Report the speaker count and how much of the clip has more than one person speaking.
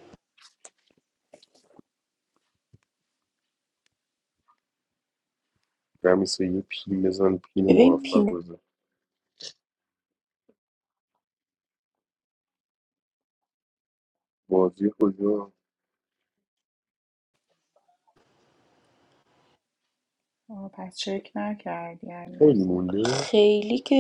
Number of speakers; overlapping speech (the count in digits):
3, about 4%